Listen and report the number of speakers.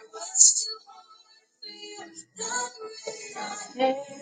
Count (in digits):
0